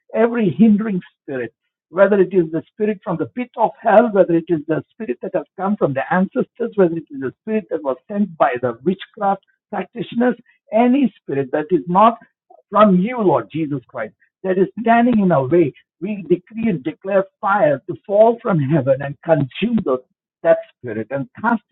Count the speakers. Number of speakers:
one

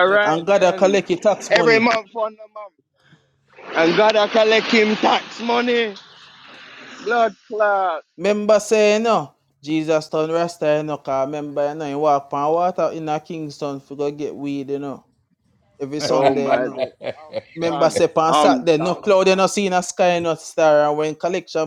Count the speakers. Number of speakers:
two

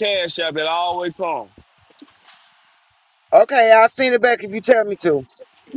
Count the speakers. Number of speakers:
two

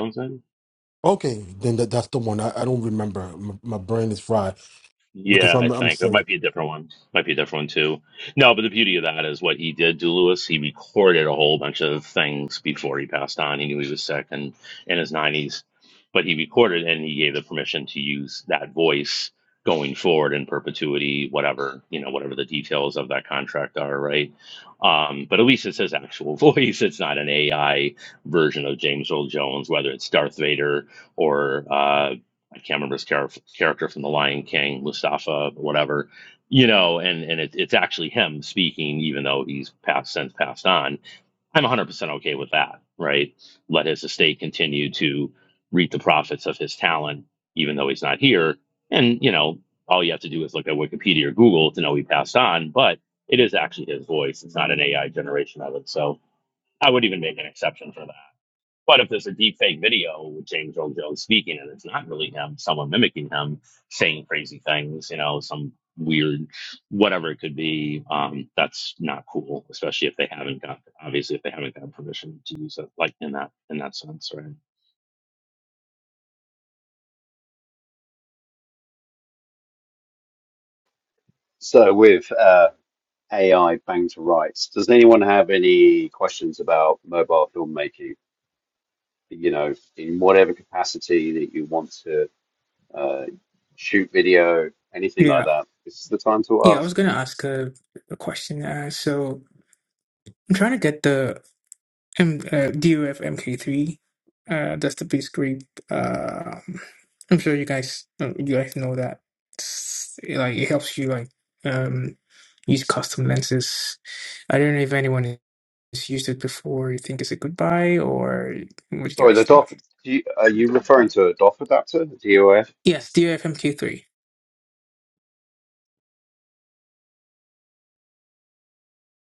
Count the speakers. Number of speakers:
four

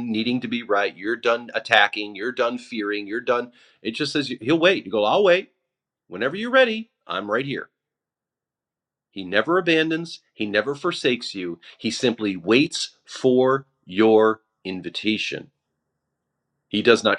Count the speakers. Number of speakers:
one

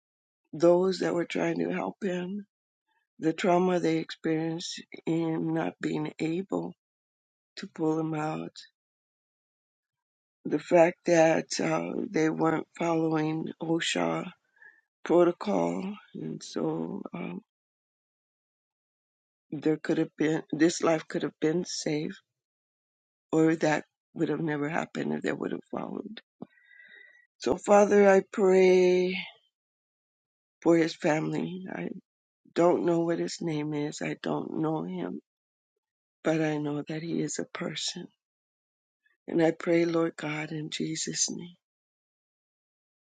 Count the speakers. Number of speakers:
one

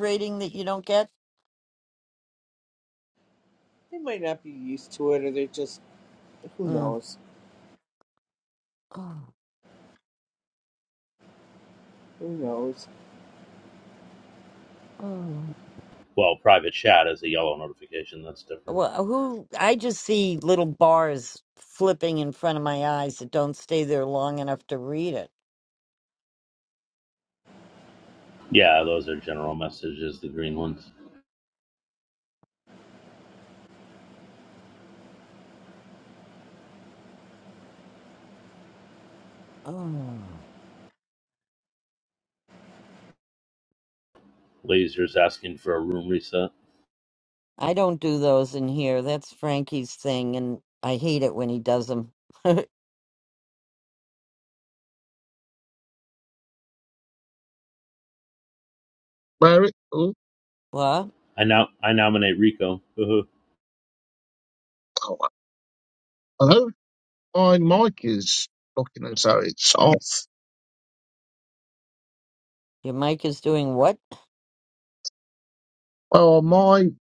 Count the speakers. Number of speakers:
four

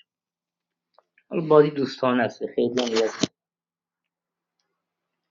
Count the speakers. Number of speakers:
one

